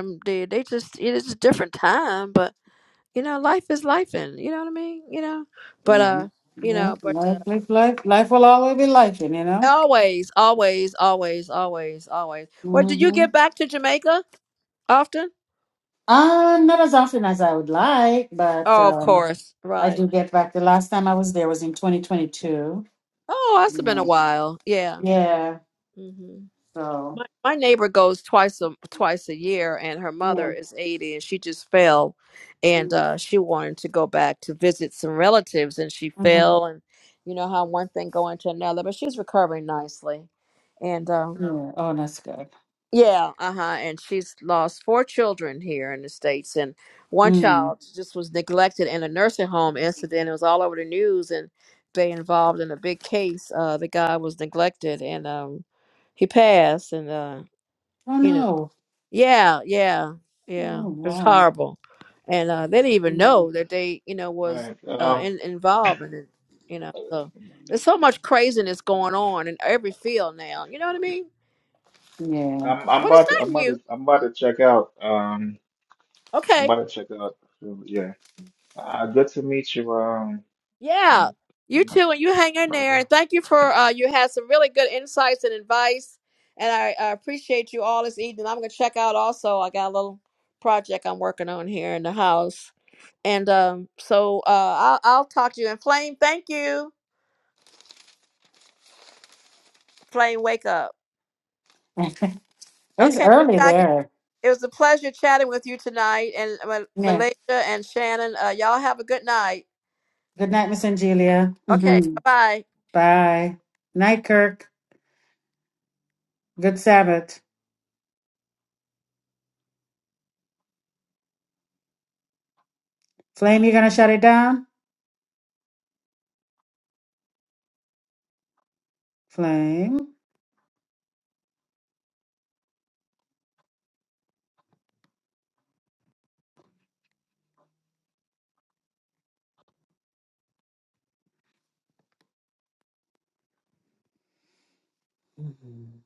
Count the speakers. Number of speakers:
three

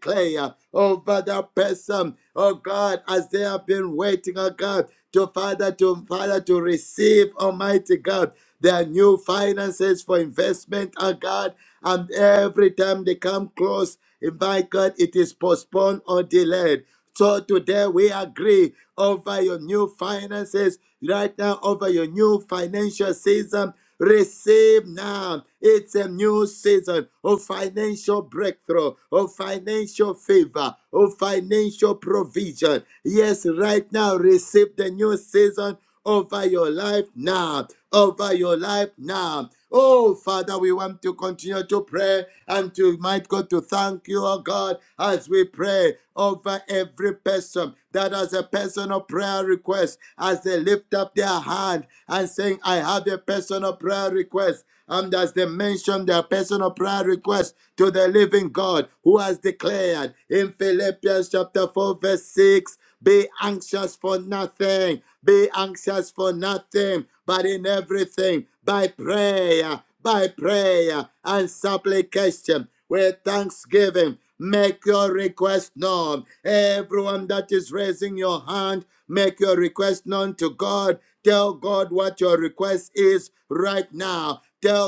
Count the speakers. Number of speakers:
one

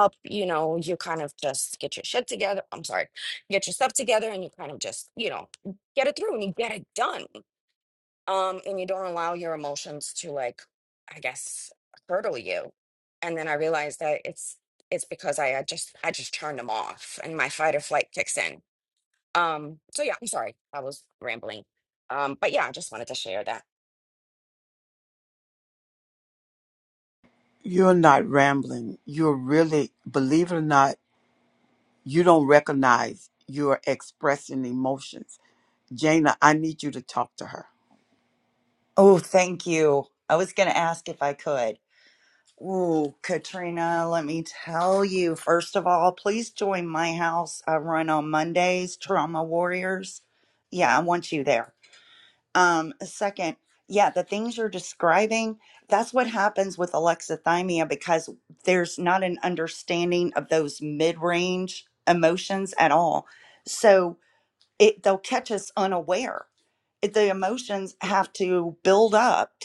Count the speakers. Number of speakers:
three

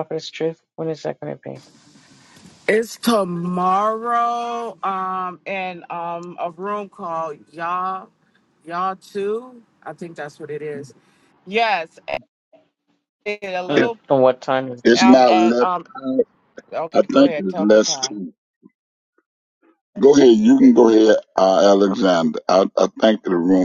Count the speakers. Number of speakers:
three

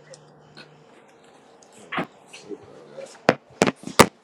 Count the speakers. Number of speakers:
zero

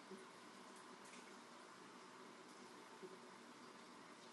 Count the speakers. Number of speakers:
zero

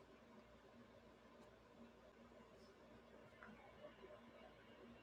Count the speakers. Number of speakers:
zero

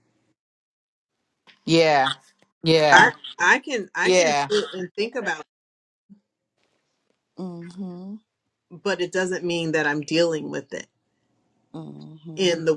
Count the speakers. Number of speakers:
three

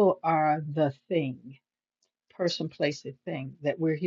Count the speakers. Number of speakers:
one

